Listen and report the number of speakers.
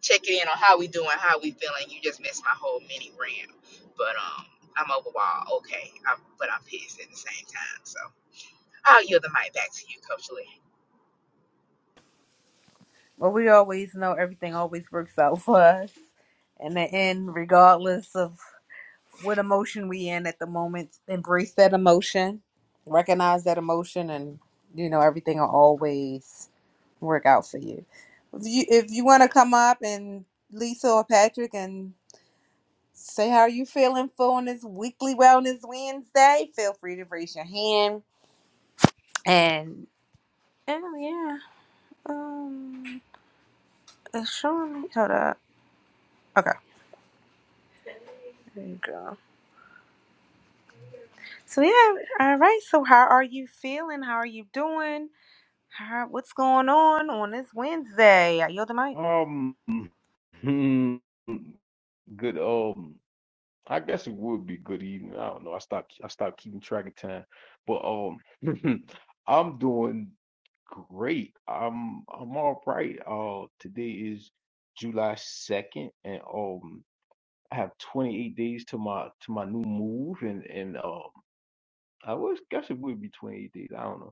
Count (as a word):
three